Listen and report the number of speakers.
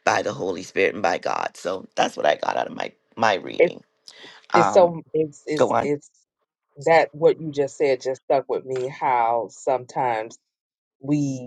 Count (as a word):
two